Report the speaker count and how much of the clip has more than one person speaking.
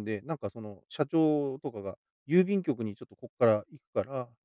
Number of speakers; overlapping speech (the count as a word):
one, no overlap